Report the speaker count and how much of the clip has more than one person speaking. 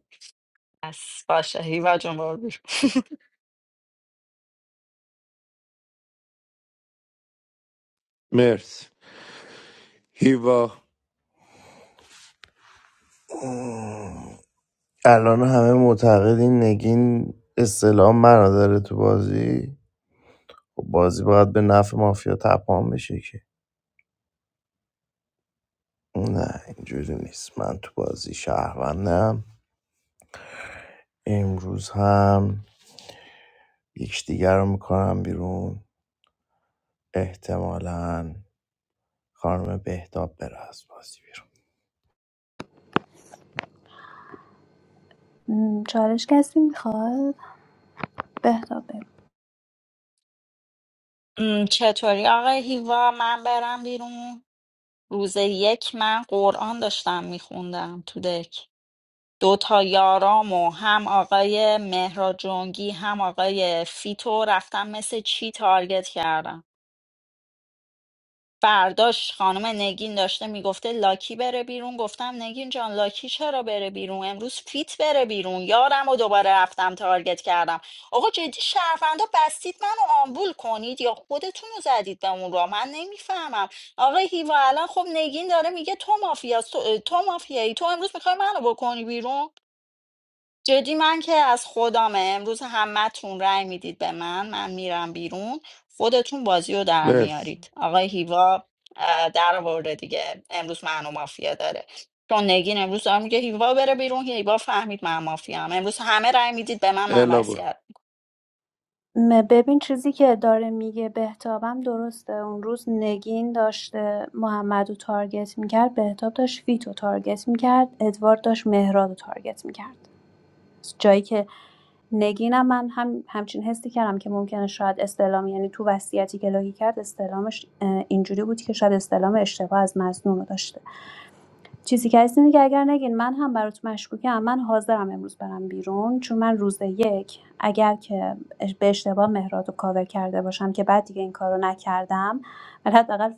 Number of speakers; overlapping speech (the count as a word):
four, about 1%